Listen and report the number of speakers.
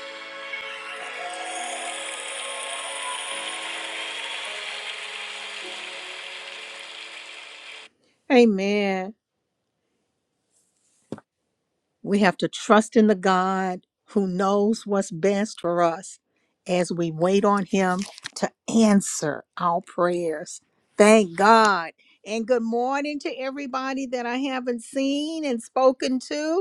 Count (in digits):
1